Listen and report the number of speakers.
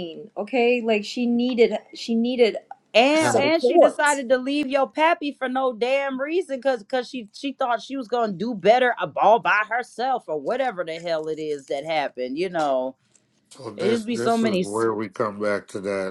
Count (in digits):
3